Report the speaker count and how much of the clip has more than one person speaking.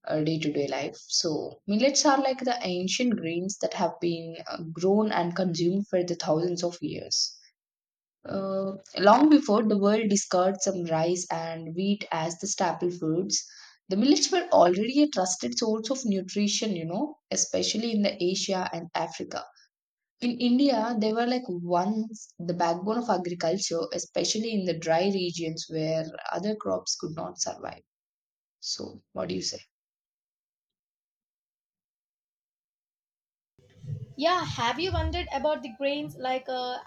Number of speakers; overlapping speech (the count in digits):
2, no overlap